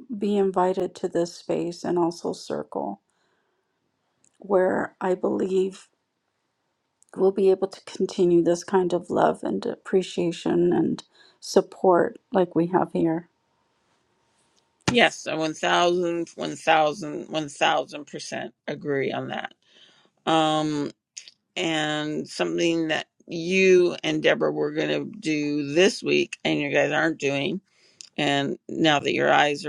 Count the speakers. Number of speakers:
2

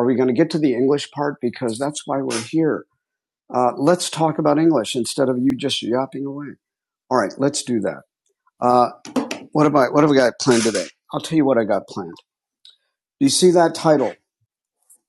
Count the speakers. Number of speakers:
1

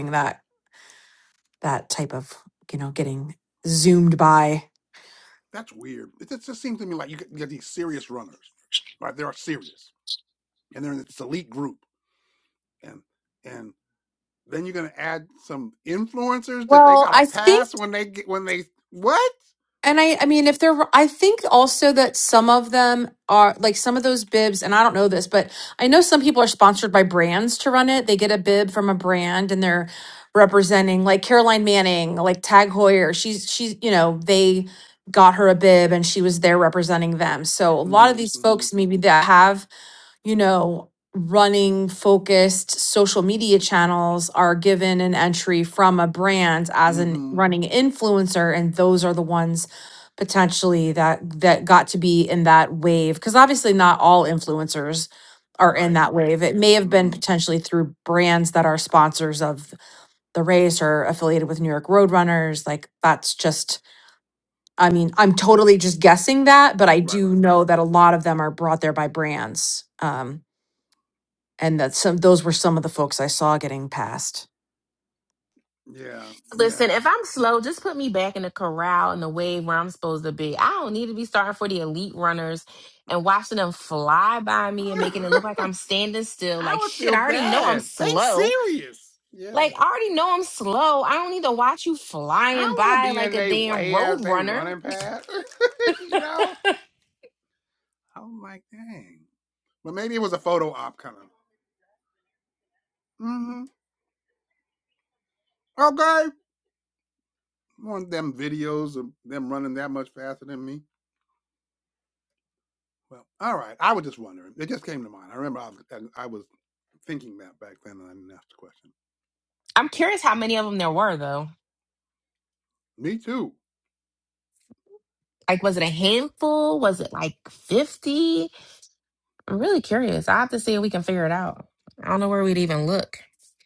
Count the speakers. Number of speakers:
3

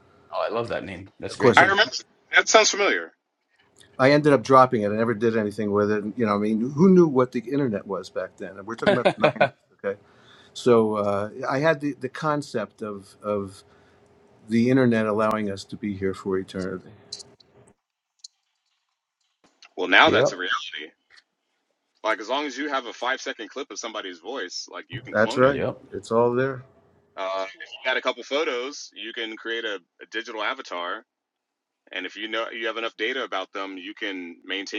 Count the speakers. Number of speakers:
3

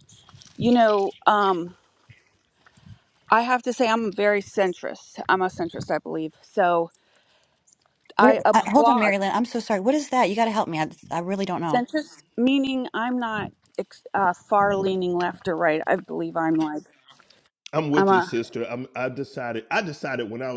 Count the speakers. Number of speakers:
3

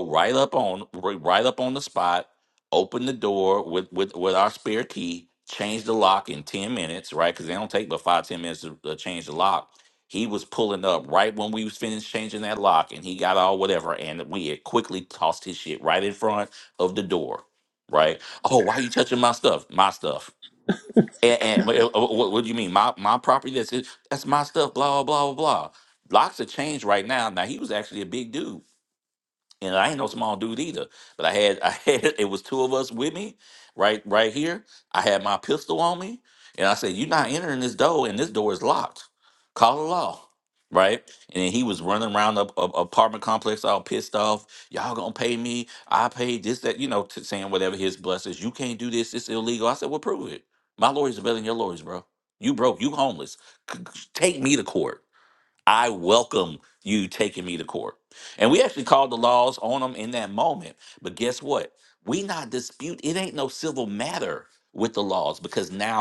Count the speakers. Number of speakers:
1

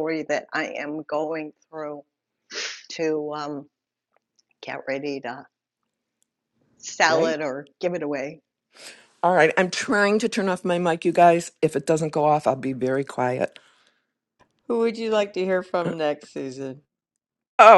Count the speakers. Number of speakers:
3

